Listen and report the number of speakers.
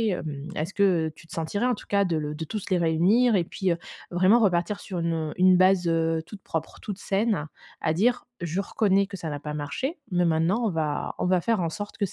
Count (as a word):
one